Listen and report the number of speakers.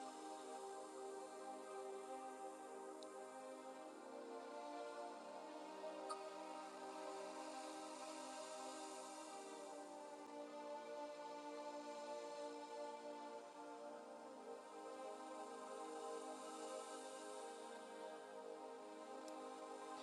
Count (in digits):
0